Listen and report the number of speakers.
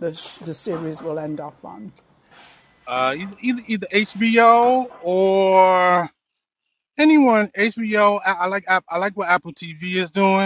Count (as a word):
two